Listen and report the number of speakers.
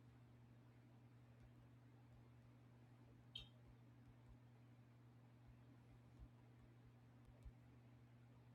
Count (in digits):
0